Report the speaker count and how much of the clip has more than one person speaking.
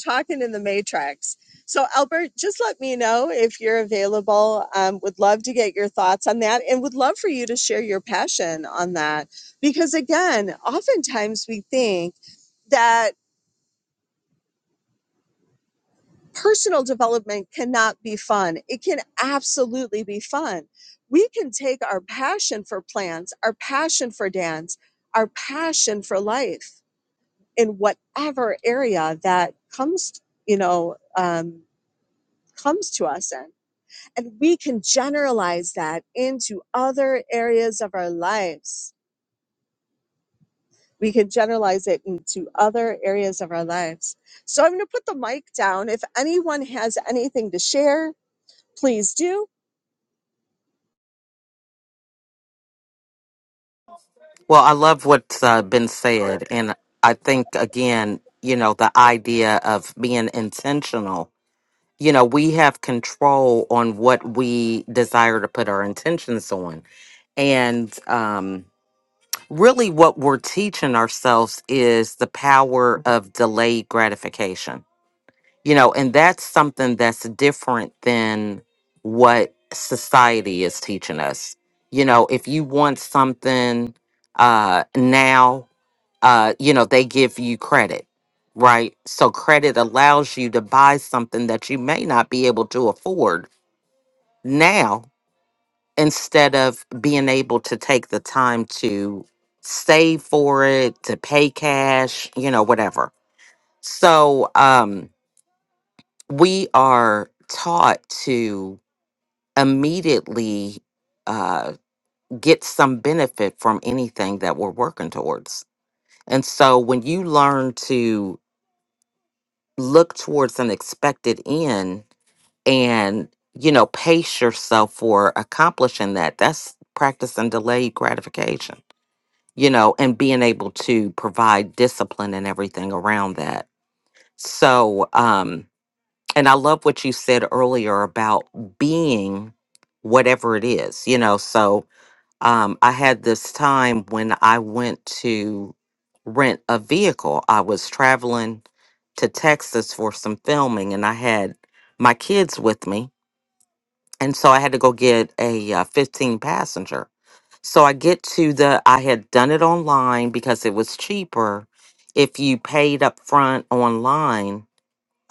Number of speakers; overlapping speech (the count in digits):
2, no overlap